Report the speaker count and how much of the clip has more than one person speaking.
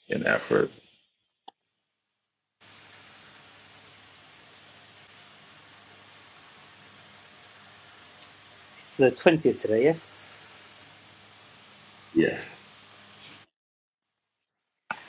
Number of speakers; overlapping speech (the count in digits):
2, no overlap